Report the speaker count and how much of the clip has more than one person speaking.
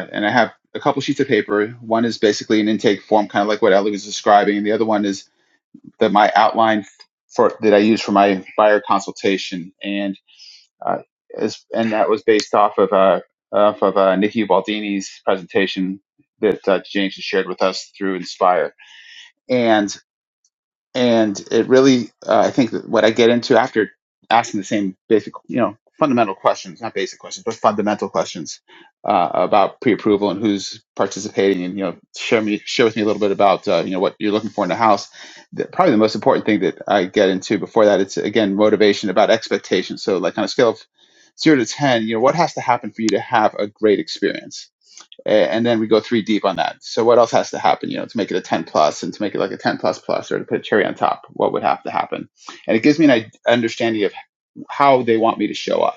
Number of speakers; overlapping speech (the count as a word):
one, no overlap